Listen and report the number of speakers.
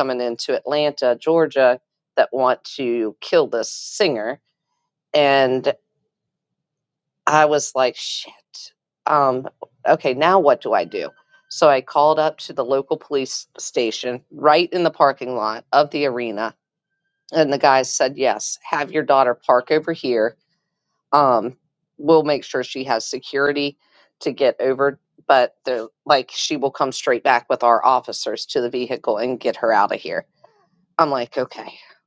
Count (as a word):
one